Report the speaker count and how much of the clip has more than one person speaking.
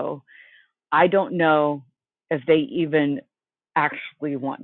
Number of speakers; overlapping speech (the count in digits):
1, no overlap